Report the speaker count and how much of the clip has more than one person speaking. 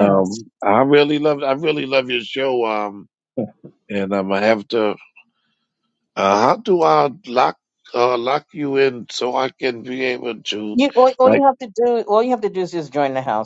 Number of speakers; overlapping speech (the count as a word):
two, about 3%